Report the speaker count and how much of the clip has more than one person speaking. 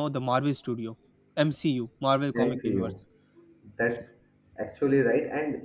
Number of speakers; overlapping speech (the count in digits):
2, about 10%